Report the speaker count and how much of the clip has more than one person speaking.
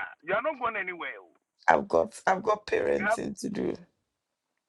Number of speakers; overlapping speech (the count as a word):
two, about 6%